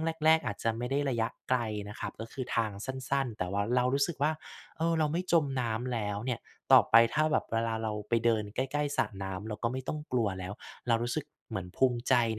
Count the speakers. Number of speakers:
1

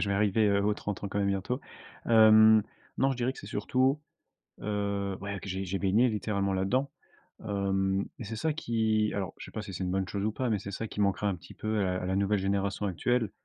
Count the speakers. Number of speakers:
1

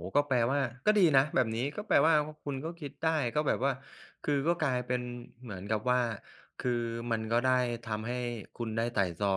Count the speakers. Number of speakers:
1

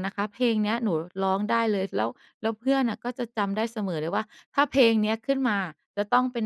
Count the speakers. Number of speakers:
1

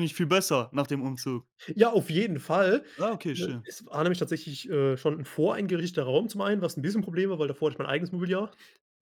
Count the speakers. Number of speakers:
2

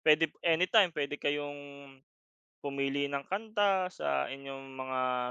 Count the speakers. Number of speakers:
1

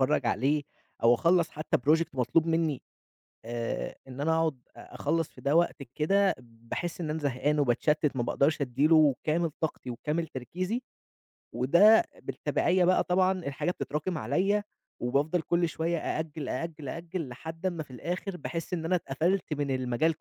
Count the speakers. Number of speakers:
1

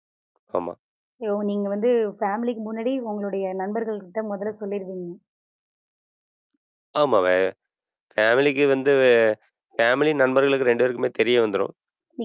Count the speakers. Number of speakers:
2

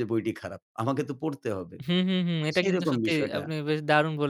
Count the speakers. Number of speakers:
2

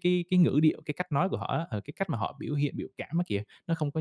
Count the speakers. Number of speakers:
1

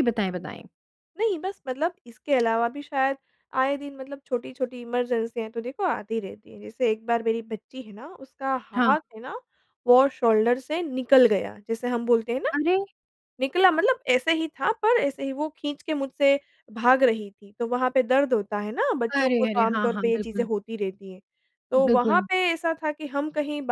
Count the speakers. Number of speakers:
2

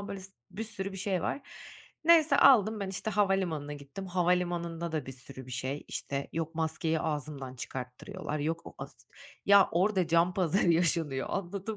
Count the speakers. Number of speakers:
1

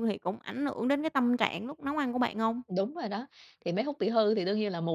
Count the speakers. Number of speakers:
2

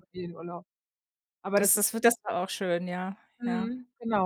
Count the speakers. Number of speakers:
2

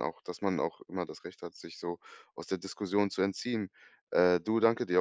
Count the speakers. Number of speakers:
1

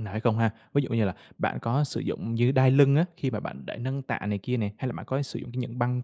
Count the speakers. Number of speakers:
1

